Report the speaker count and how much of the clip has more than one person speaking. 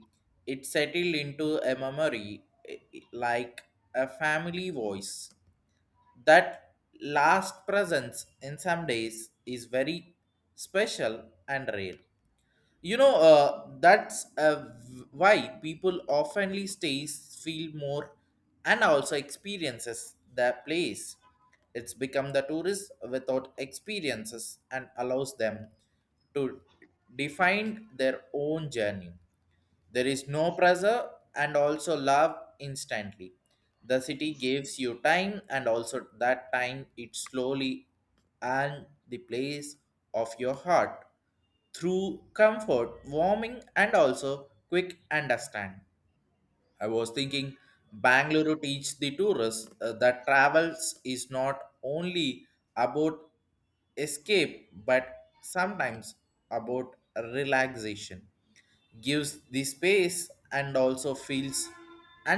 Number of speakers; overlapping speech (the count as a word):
one, no overlap